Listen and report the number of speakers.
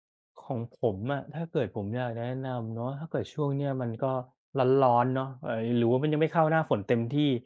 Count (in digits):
1